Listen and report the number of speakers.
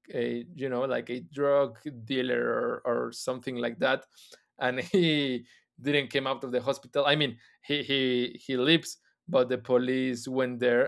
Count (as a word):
one